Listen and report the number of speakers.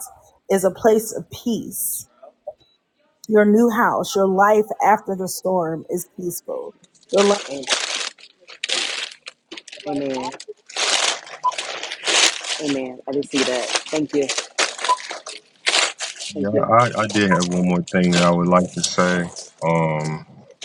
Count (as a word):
three